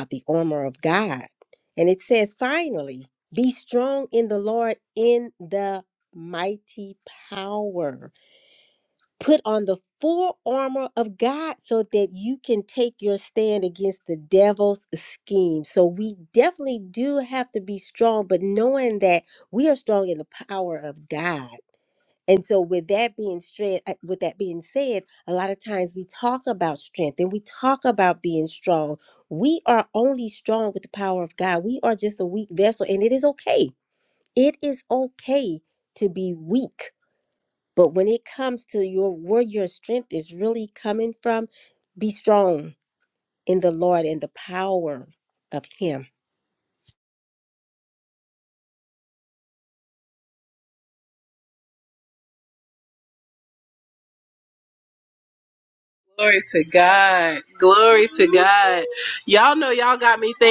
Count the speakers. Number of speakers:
2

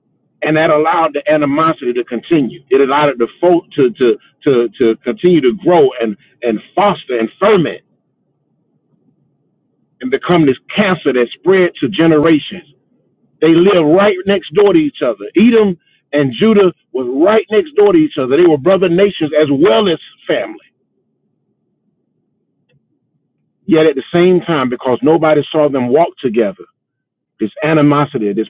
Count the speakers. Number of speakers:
1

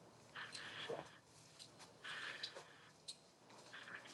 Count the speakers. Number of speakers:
0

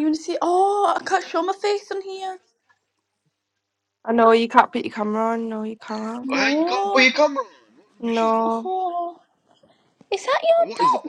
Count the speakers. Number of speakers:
3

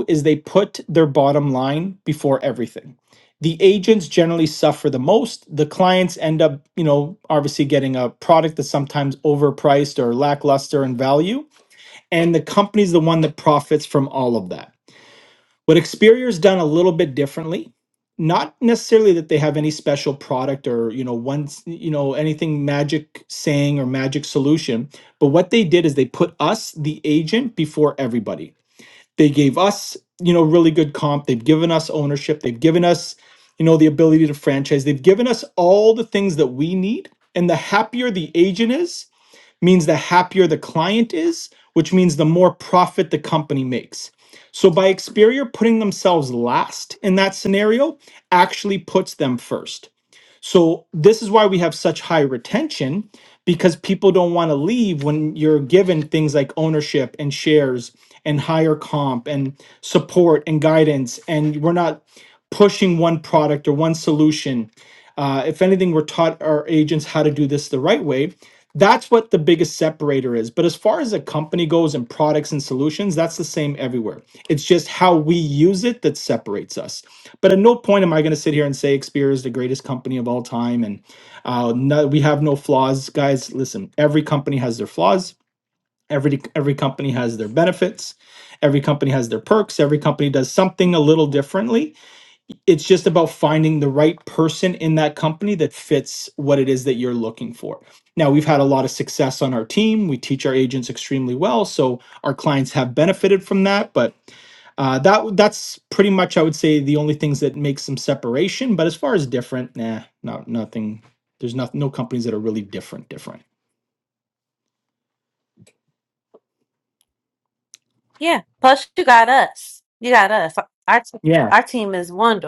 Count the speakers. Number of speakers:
2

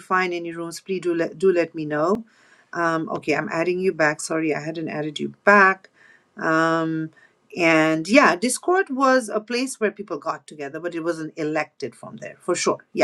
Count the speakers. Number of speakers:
1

